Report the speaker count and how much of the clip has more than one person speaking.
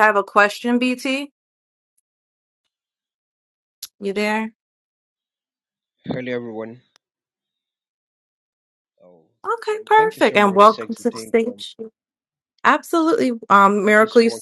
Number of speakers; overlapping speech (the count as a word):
two, about 17%